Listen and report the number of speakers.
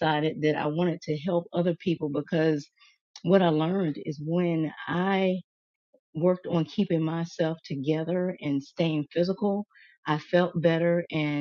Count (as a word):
one